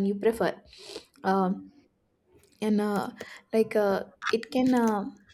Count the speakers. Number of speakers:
1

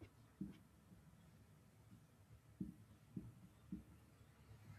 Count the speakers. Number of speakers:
0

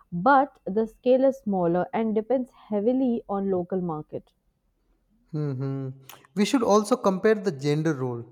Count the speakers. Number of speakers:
2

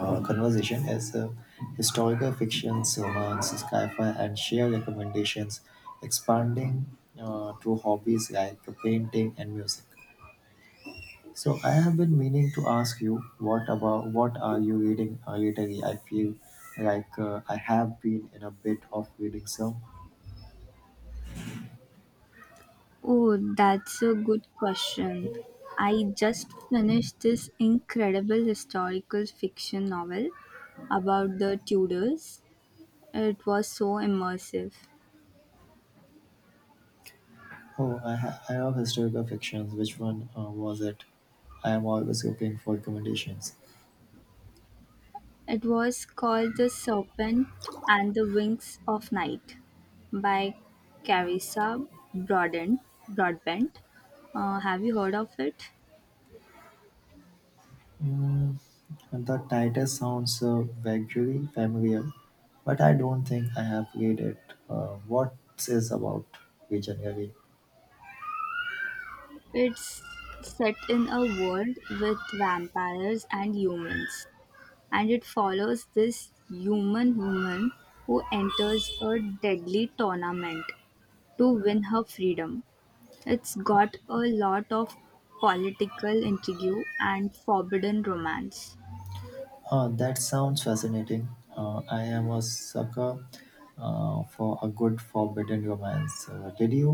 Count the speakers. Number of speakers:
2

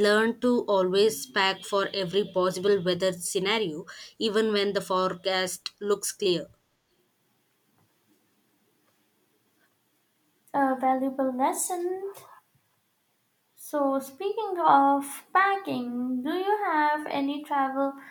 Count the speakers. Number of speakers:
2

